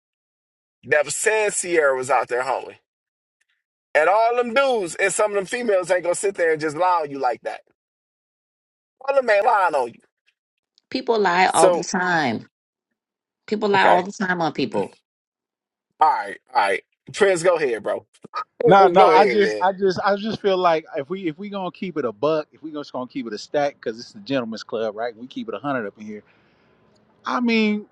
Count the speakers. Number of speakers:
3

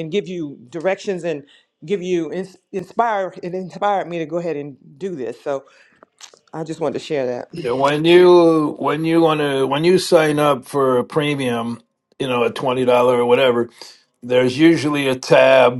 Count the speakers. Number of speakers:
2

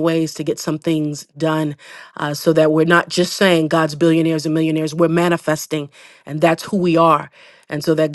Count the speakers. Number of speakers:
1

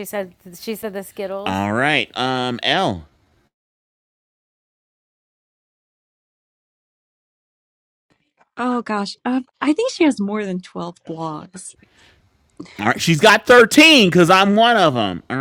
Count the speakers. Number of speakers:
3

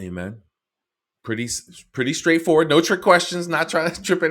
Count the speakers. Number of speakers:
1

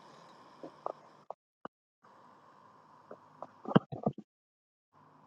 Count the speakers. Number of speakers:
0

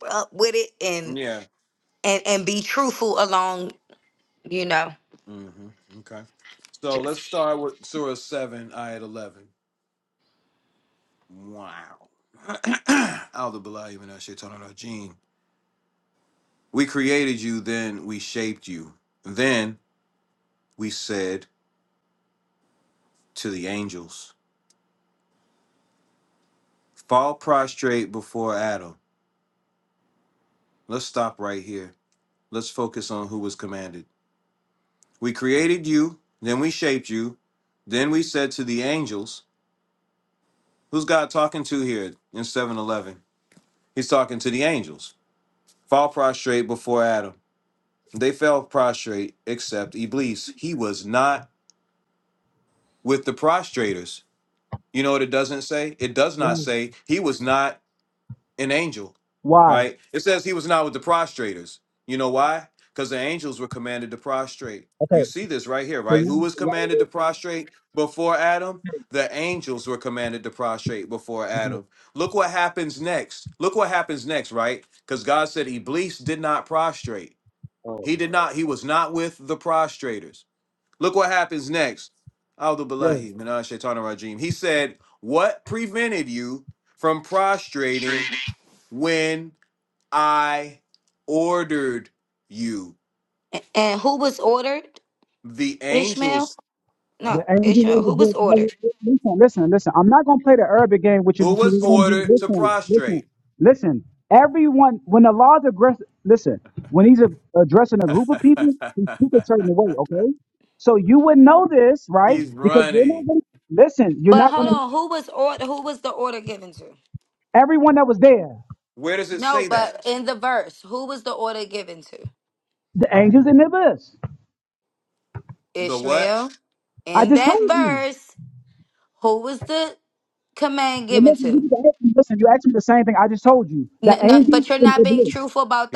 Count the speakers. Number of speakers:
3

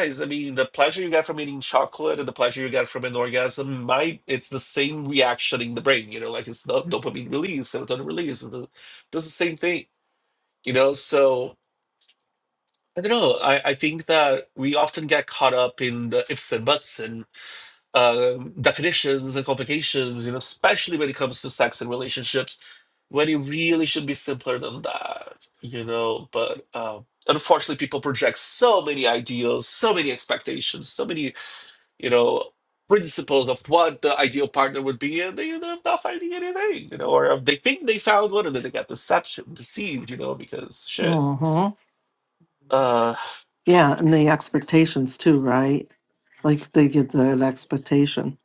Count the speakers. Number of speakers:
2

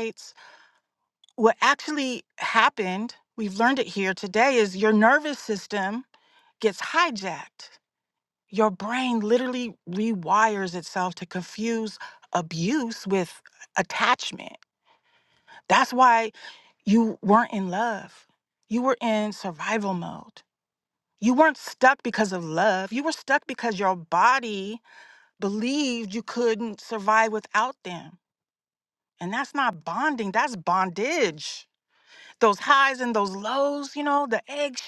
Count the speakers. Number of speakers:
1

